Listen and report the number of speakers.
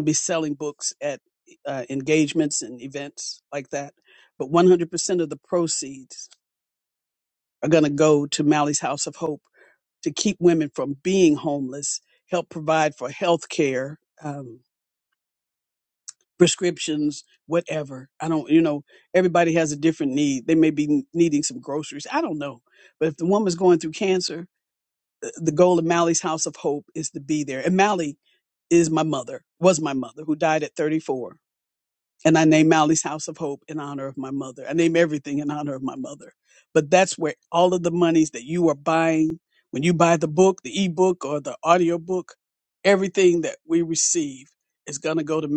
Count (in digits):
1